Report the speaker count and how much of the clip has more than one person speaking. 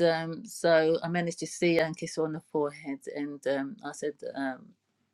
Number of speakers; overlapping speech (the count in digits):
1, no overlap